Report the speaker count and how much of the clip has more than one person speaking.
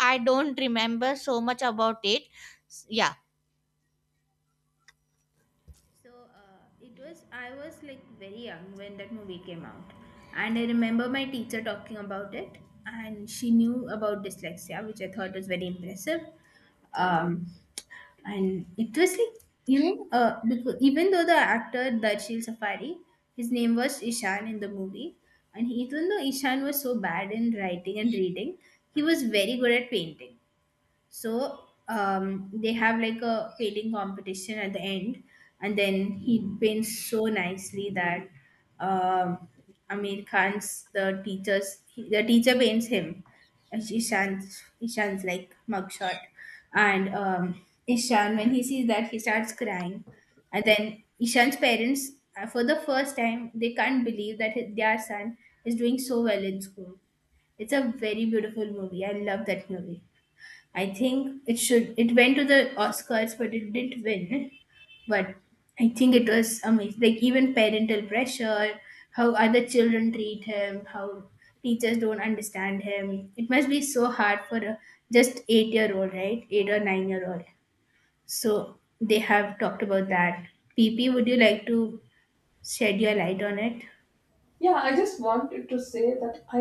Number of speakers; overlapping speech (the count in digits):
3, no overlap